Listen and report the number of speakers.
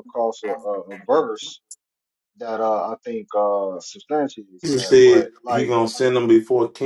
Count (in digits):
2